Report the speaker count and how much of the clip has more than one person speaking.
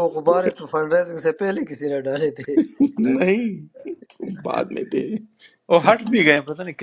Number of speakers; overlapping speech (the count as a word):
three, about 1%